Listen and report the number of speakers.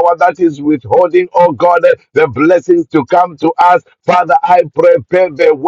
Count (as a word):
one